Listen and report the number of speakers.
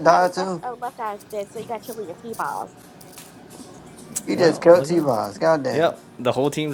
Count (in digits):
3